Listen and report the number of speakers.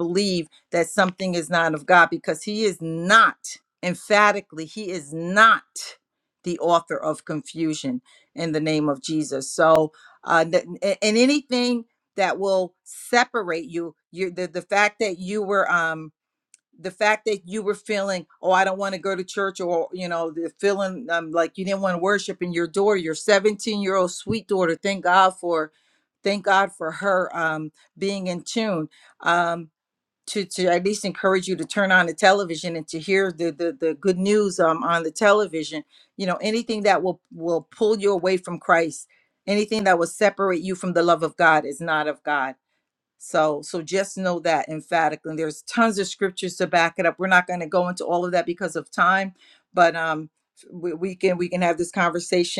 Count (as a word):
one